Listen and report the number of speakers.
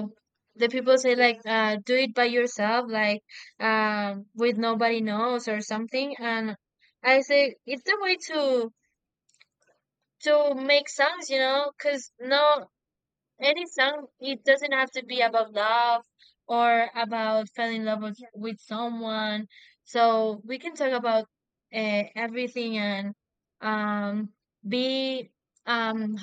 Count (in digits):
1